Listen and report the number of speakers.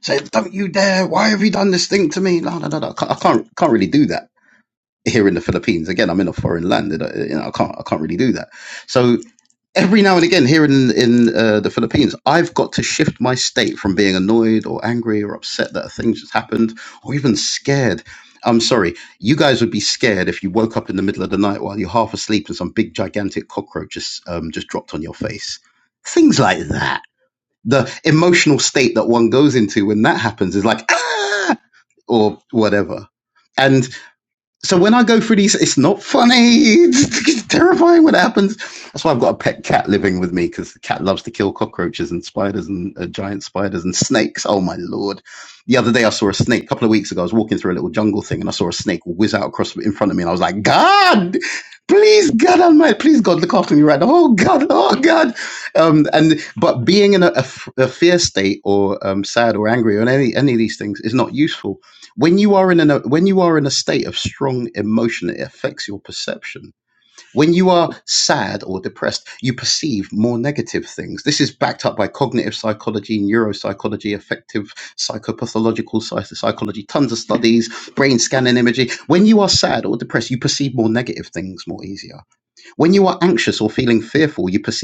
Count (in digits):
1